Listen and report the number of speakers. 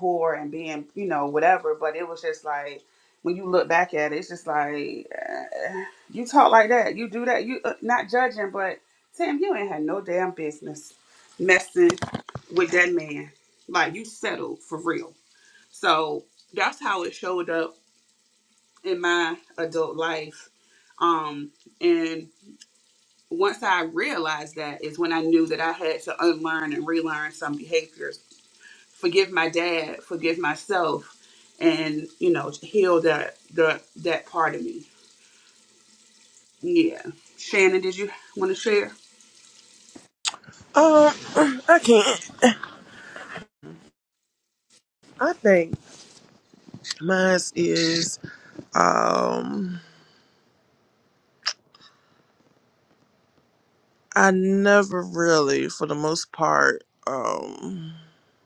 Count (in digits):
2